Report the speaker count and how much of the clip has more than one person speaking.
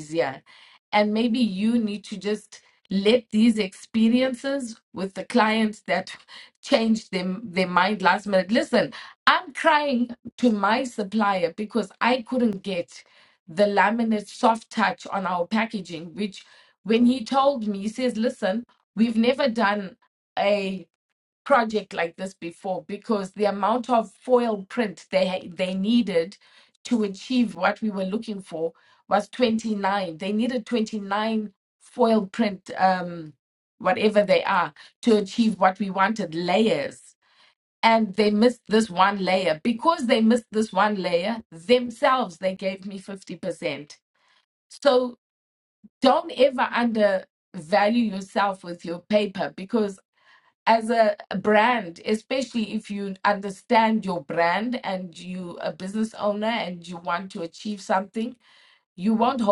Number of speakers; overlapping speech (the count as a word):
one, no overlap